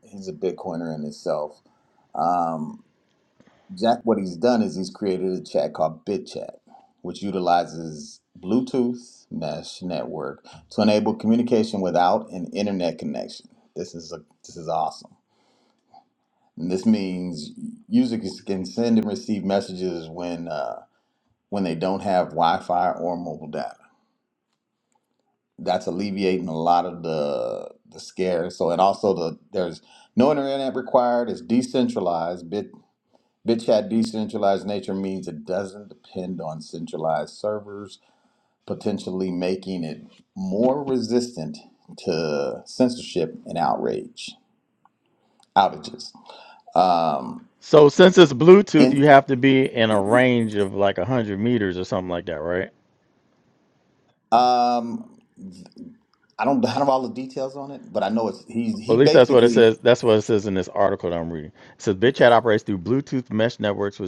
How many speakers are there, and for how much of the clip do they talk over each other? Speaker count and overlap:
2, about 2%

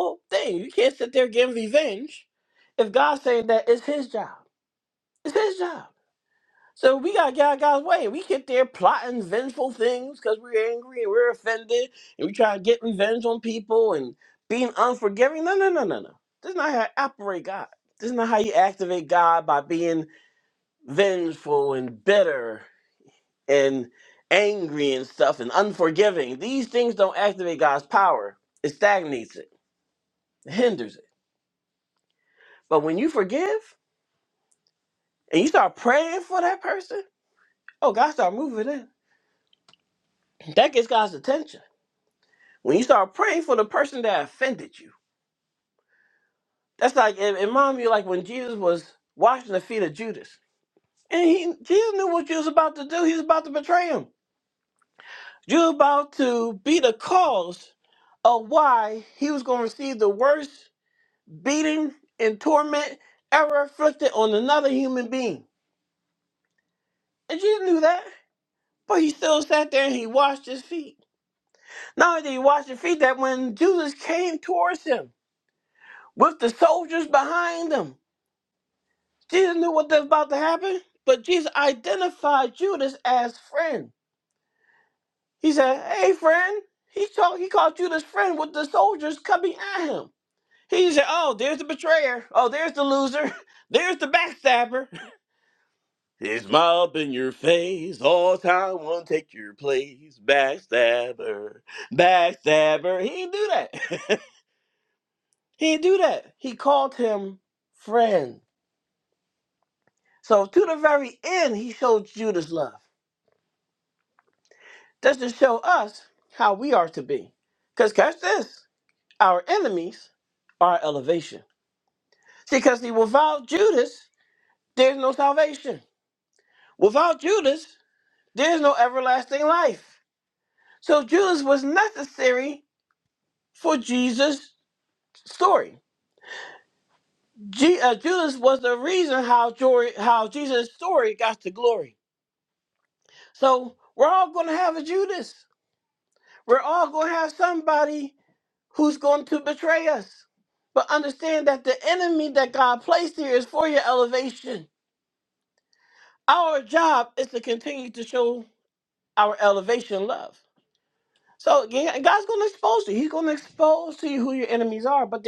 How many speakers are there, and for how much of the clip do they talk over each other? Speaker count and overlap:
1, no overlap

